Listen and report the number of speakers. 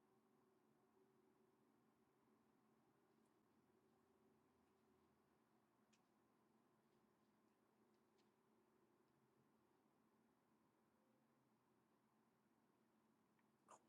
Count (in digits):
0